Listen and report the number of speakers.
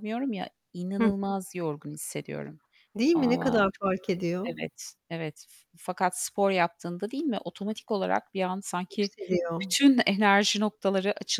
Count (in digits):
2